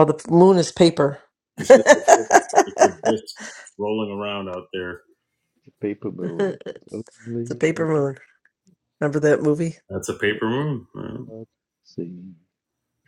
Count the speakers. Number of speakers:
3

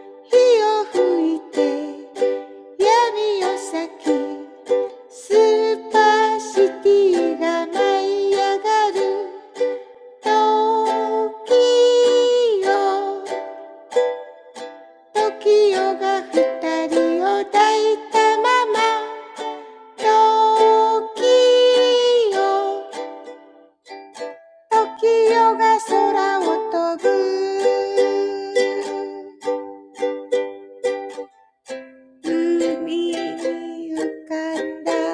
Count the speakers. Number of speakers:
1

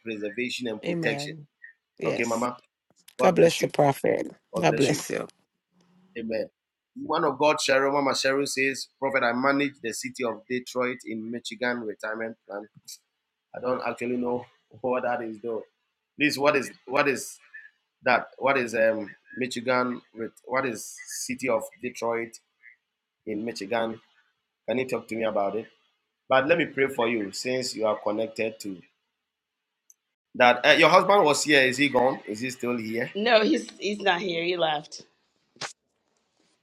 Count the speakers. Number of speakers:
3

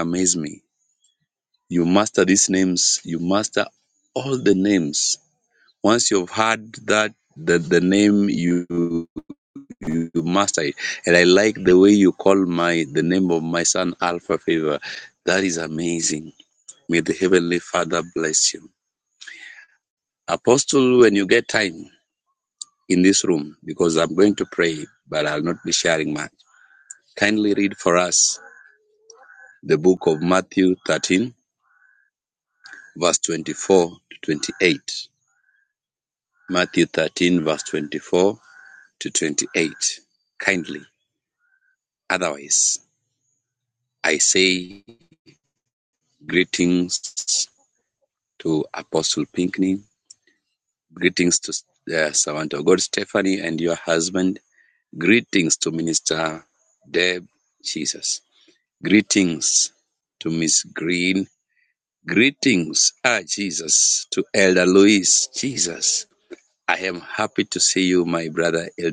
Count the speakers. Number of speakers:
1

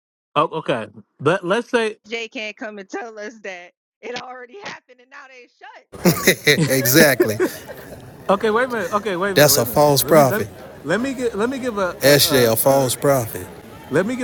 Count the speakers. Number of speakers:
3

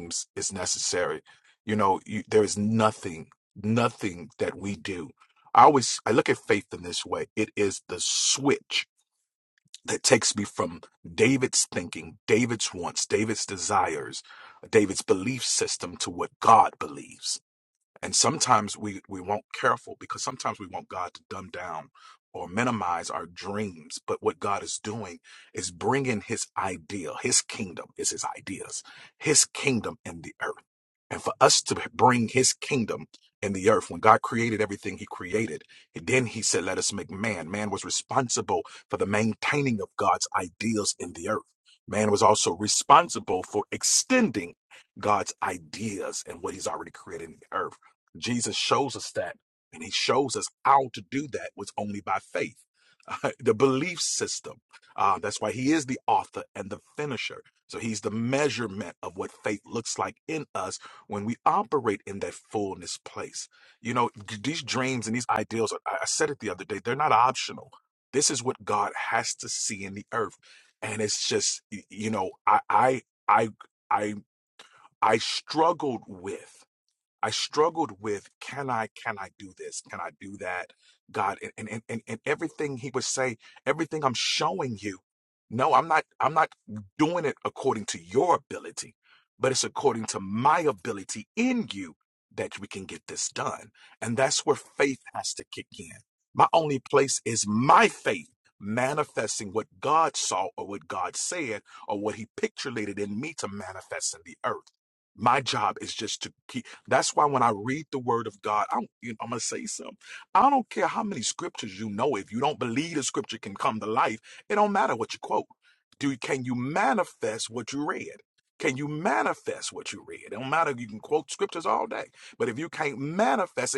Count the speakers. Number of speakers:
1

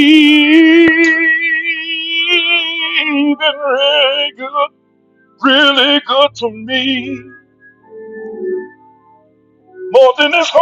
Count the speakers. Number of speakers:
1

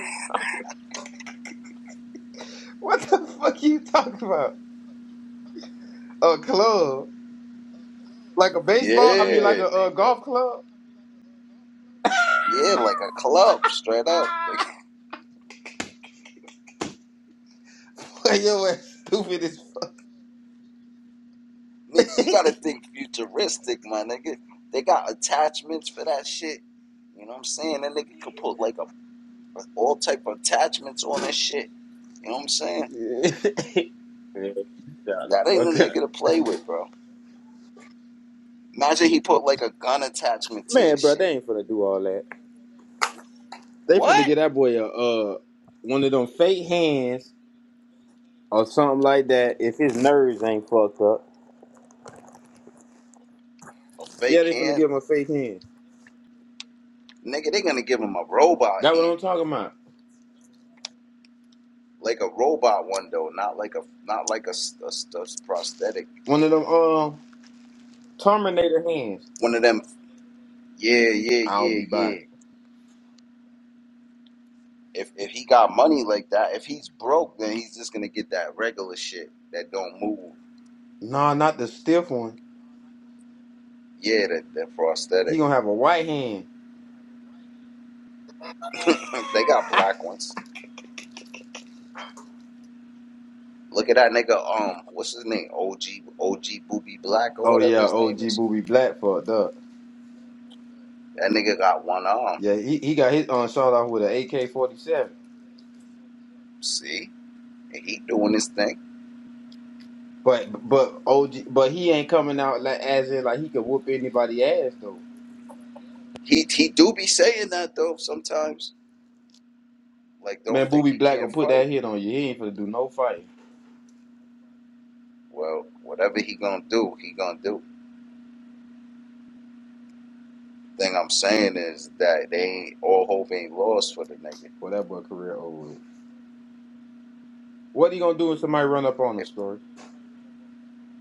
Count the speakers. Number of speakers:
2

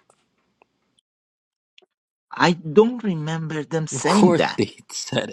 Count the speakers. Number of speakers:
2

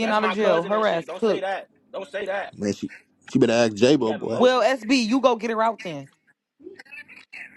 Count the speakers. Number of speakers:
3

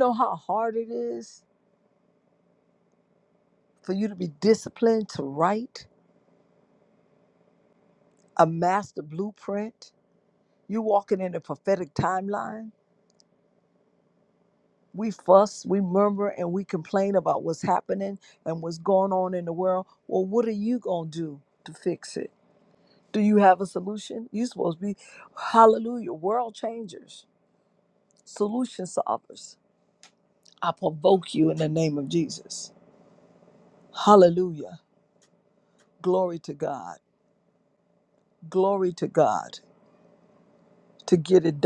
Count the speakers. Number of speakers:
1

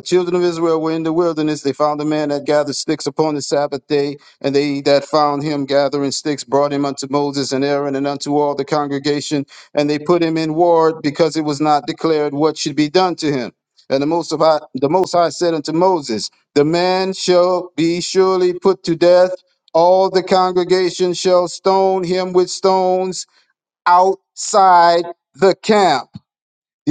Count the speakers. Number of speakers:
1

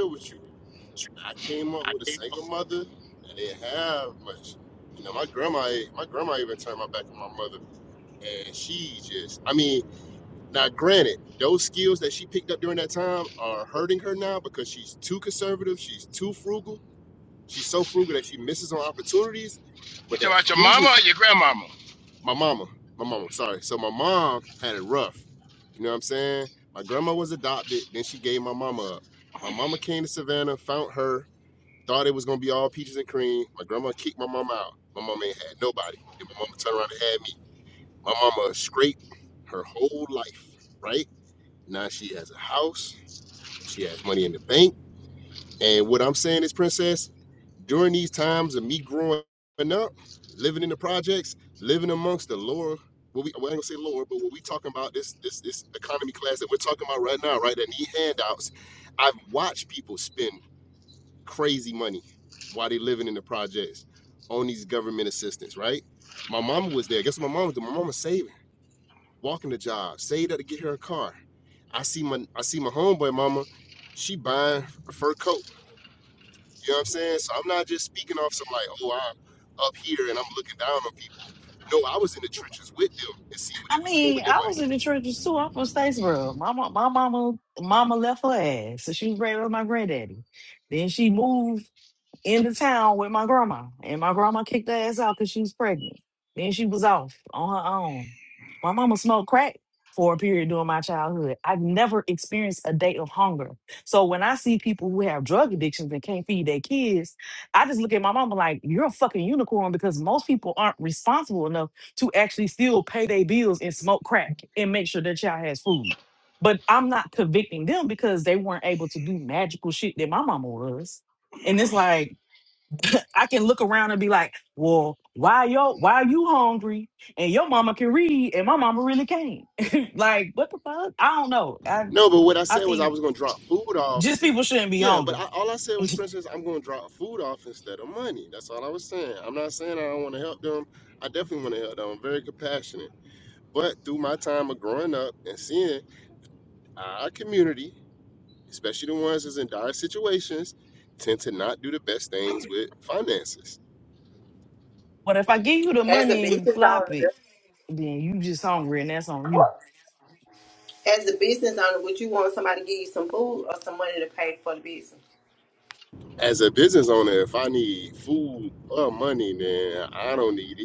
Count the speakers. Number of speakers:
4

